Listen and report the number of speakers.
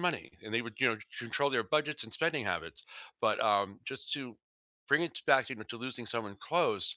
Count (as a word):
one